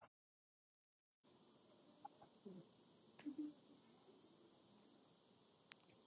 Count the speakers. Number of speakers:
zero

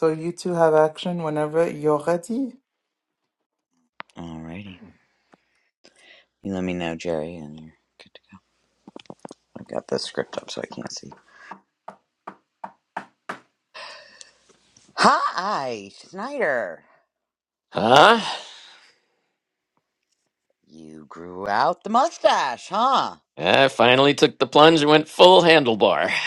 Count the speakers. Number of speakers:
three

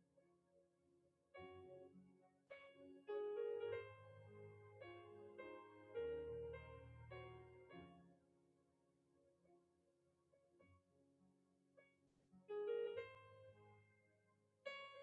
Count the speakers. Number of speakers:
zero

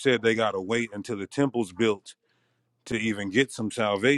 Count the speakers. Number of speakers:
one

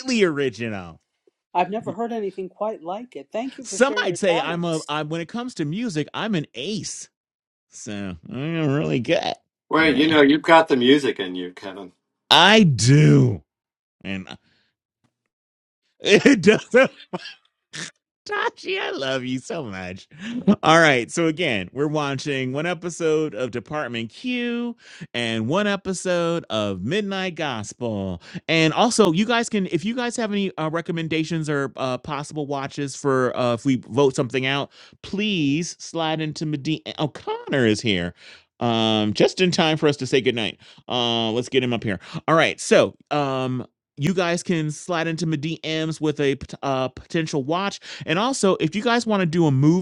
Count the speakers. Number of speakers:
three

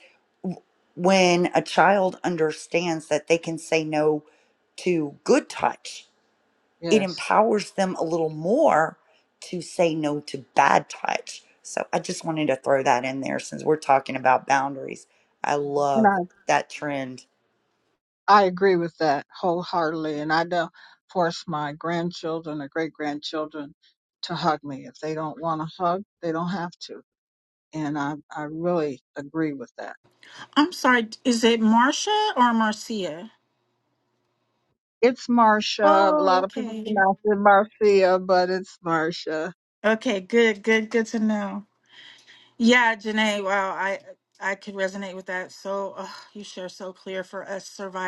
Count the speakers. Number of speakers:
three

